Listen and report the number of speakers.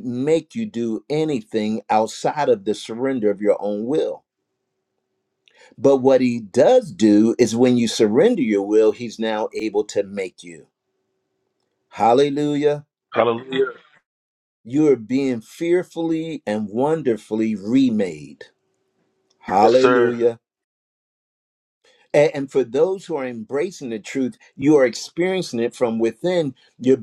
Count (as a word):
two